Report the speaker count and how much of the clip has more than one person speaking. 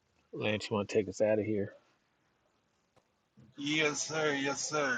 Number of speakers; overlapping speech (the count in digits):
2, no overlap